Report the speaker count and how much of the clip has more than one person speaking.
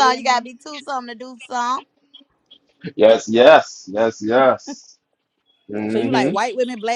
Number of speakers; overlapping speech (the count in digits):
3, about 13%